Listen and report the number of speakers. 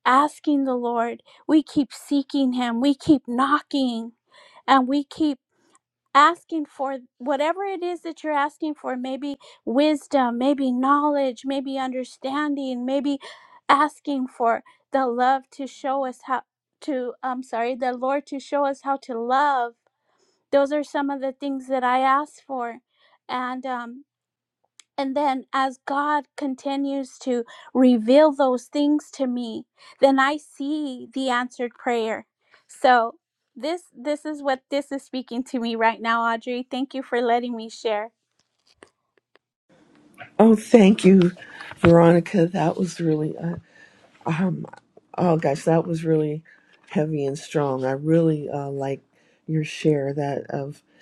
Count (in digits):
2